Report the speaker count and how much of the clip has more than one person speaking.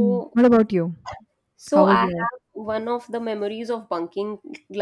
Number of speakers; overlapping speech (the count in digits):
2, about 16%